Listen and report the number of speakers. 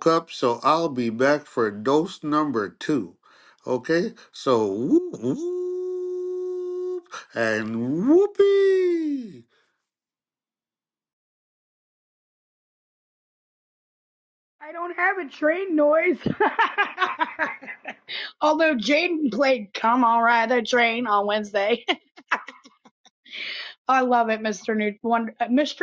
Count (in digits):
2